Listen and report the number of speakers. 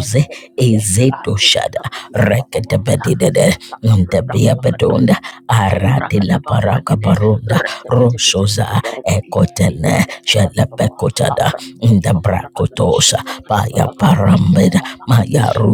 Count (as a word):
two